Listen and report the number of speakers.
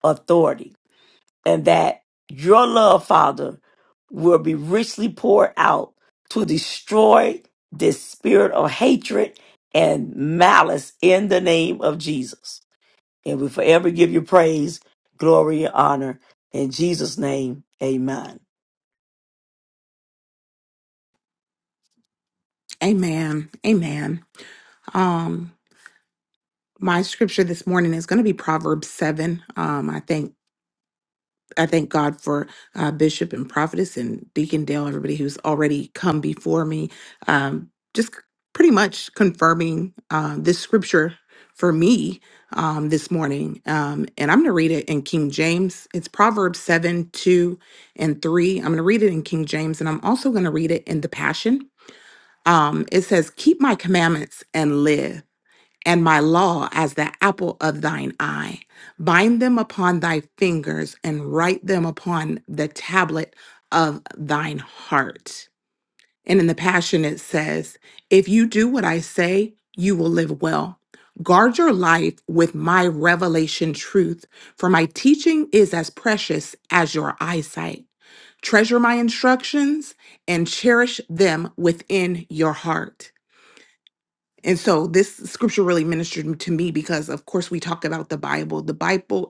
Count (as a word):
two